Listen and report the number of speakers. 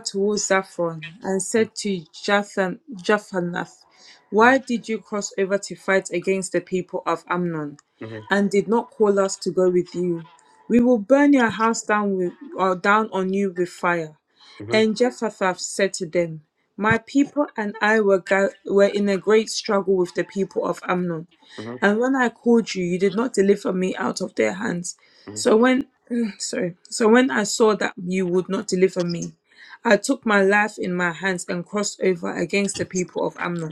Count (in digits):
2